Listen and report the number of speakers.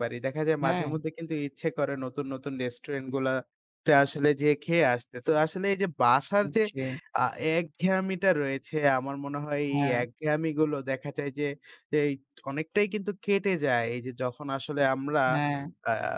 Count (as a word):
two